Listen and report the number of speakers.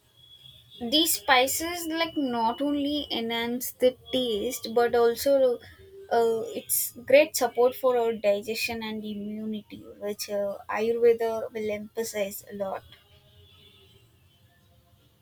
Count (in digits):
1